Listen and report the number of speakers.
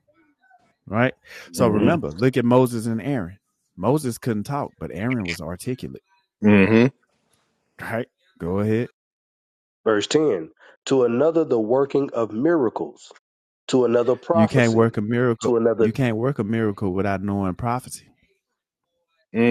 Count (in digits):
3